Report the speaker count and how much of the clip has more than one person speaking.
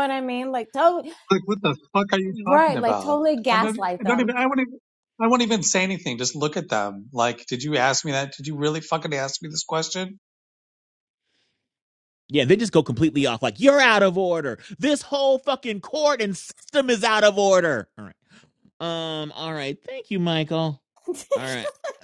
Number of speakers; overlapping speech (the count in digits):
3, about 7%